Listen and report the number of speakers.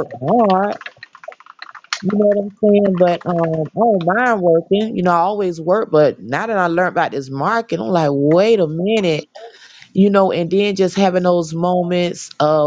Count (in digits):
1